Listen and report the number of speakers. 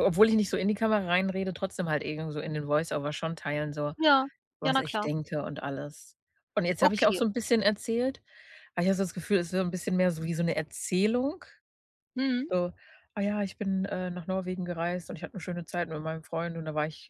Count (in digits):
2